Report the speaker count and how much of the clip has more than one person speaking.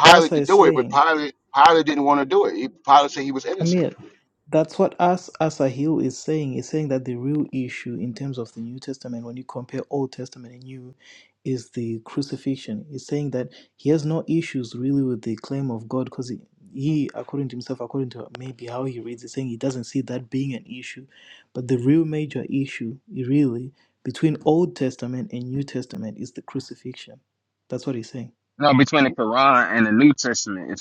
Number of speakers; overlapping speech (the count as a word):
three, about 4%